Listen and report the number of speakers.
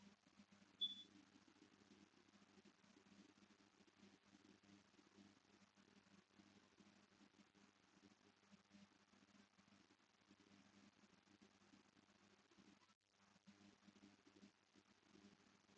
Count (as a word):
zero